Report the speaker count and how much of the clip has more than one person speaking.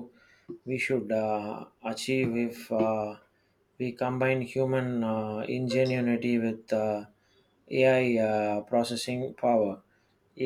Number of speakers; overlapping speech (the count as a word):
one, no overlap